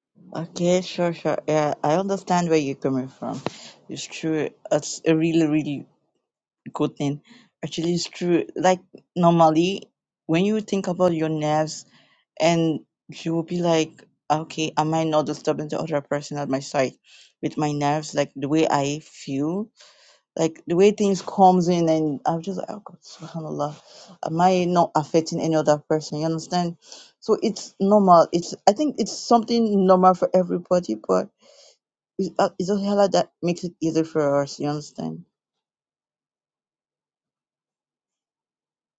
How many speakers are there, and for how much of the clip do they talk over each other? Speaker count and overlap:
1, no overlap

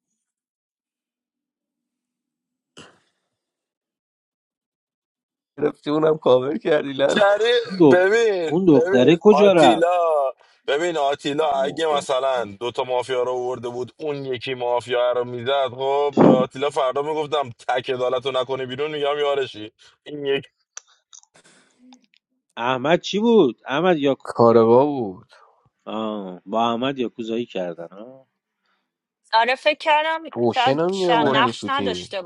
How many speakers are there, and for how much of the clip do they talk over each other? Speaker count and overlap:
4, about 12%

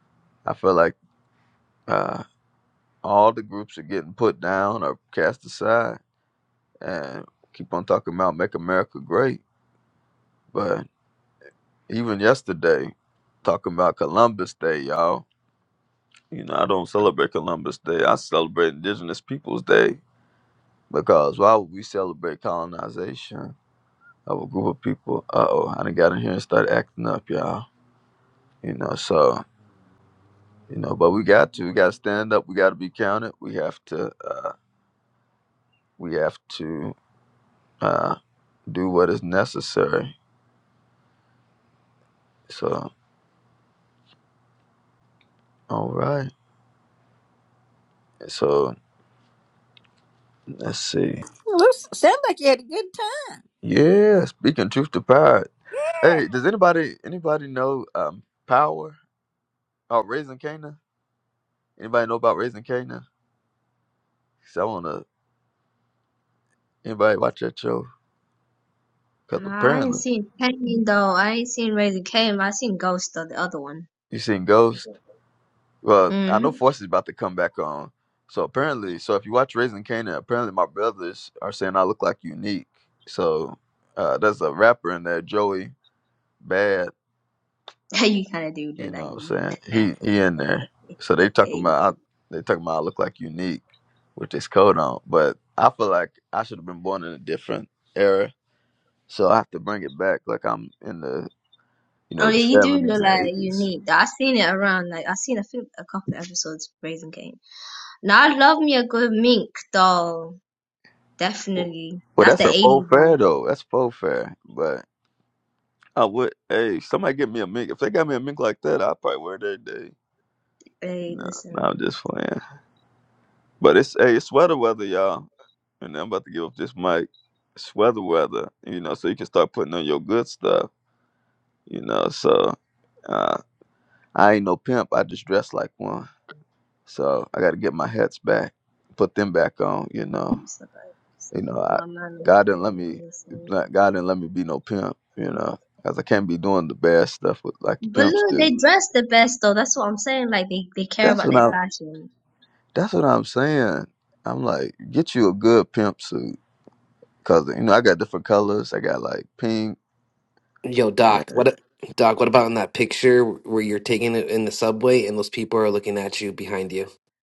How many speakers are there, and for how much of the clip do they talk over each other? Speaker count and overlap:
4, about 4%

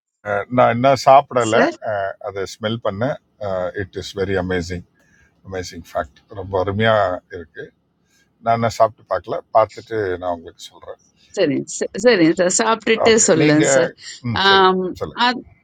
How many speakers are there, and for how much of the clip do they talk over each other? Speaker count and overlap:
2, about 7%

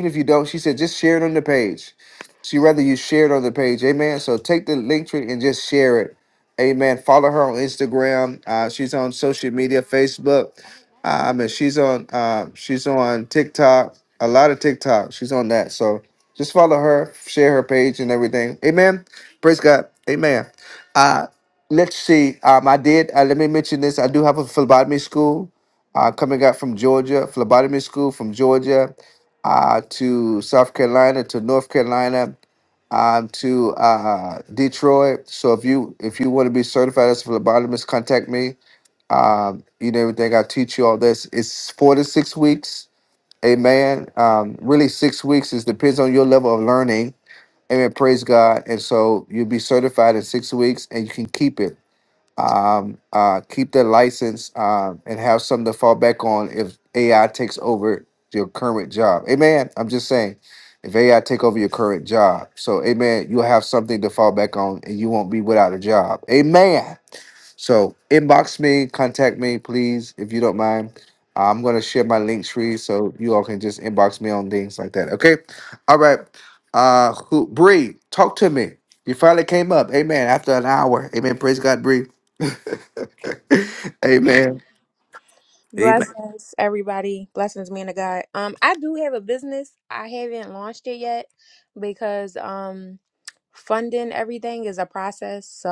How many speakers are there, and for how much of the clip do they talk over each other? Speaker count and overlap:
2, under 1%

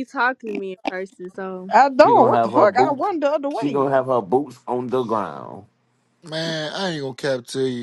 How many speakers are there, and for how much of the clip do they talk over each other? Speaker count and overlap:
4, about 17%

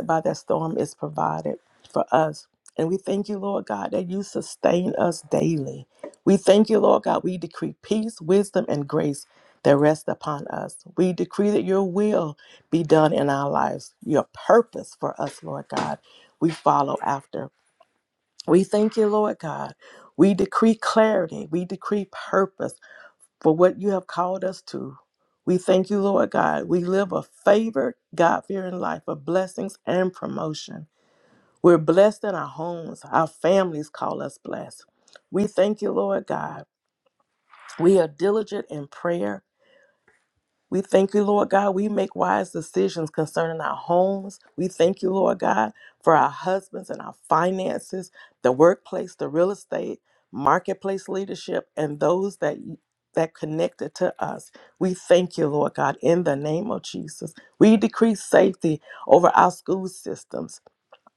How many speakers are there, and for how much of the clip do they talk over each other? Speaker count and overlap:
1, no overlap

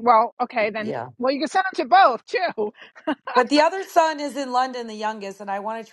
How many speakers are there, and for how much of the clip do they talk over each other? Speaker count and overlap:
2, about 5%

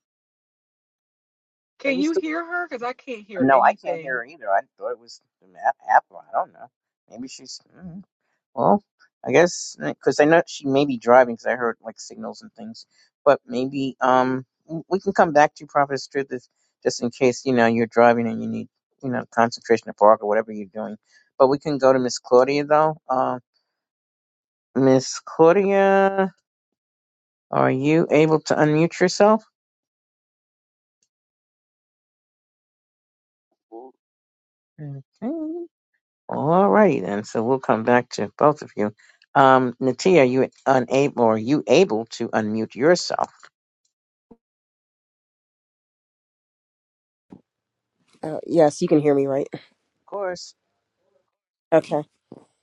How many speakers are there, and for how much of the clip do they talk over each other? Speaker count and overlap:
3, about 2%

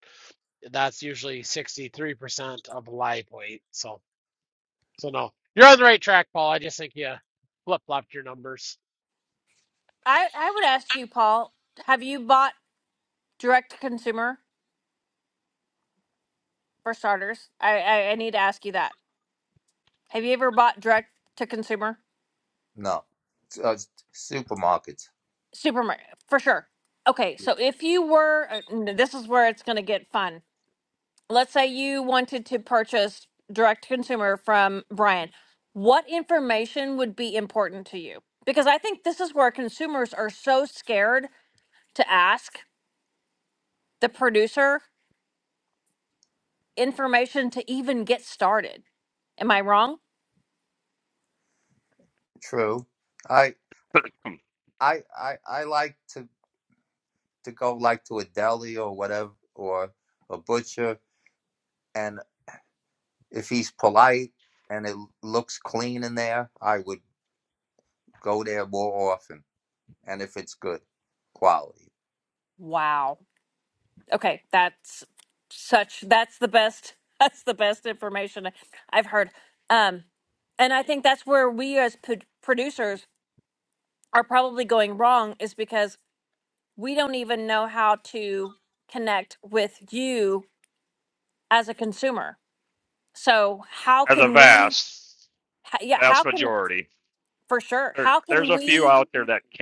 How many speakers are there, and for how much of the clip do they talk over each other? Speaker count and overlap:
4, about 2%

